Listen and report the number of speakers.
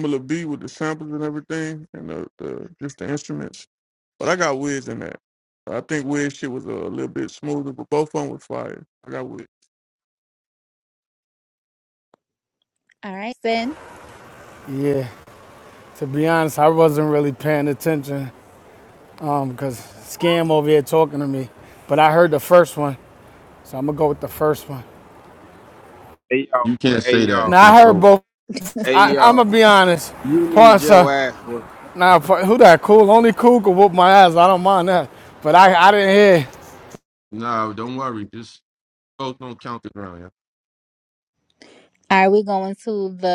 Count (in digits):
5